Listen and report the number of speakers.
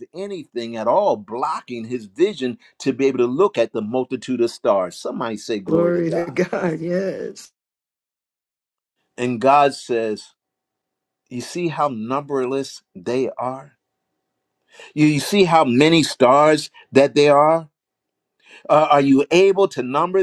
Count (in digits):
2